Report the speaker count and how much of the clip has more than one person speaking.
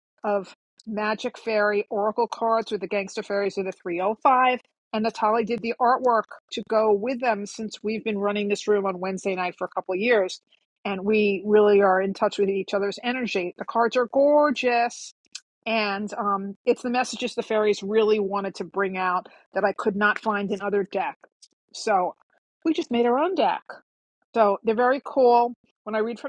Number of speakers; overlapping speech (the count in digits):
1, no overlap